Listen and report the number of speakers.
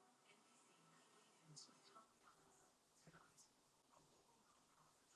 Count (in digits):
0